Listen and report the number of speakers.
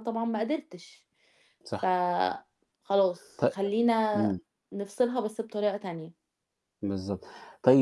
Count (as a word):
two